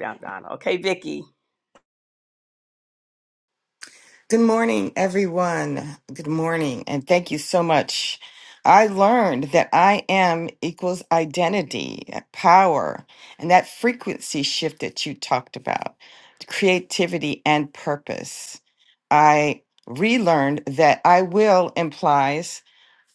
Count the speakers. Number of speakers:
2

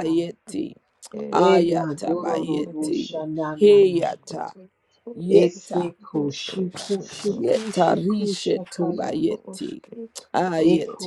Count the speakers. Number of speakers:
3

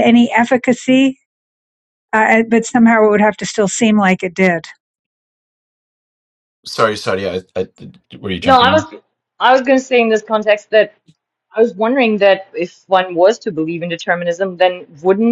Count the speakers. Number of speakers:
3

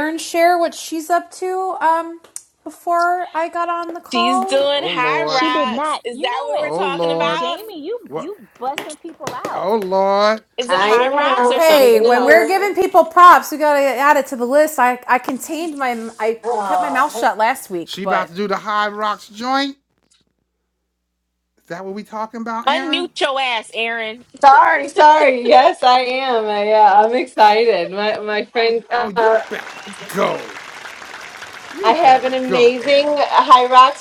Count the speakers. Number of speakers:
5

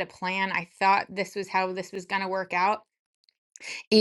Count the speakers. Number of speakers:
1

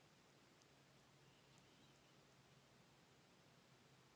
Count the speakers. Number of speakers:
0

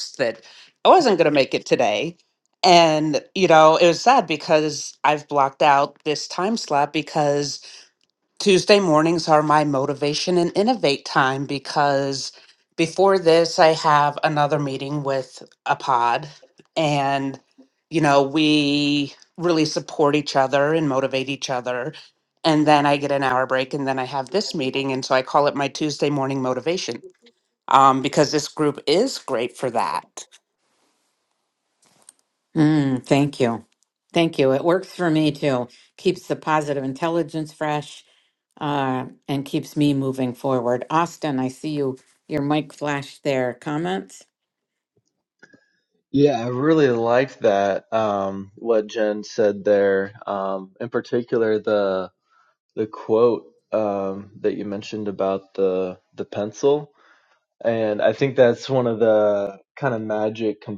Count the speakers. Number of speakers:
3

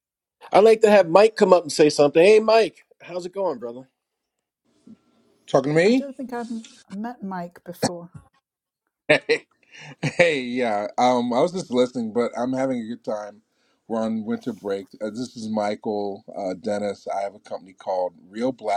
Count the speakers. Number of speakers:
3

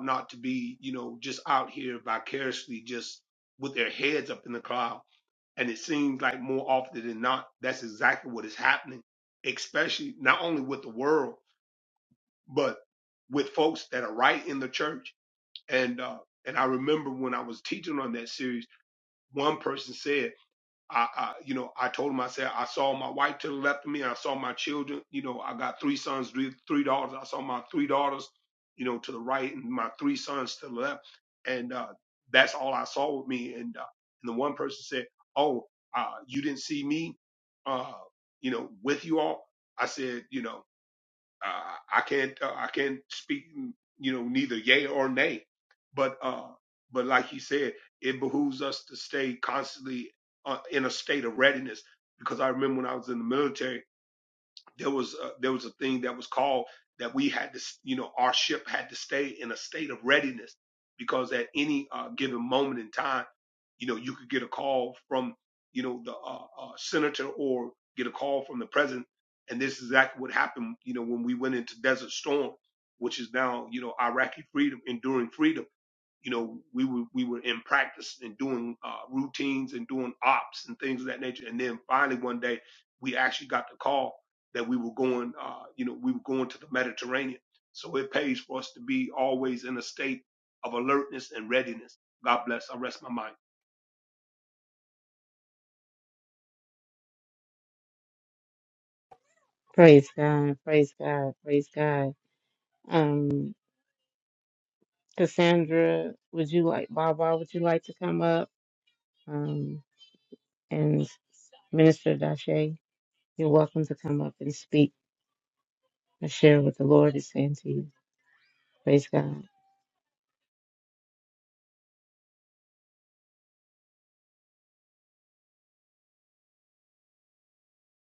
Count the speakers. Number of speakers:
2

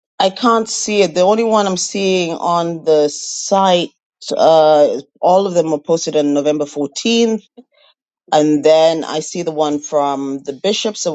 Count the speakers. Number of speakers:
1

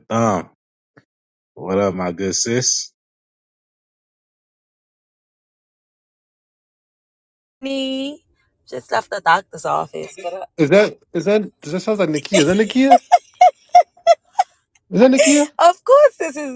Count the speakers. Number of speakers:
3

